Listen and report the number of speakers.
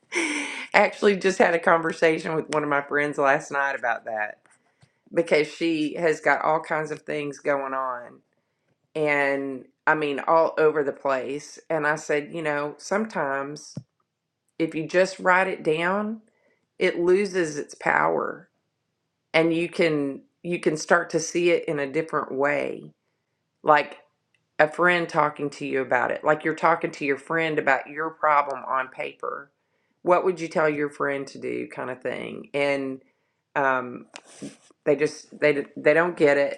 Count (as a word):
one